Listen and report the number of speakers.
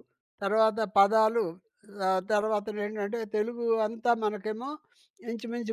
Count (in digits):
1